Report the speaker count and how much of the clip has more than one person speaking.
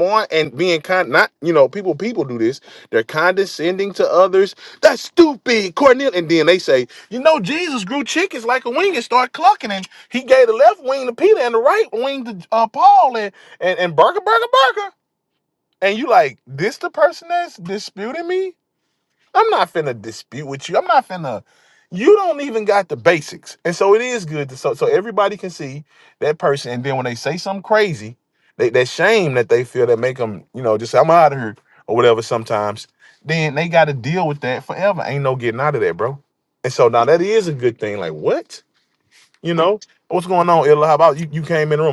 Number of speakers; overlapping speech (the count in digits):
1, no overlap